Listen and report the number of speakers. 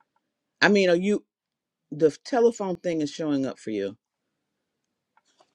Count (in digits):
1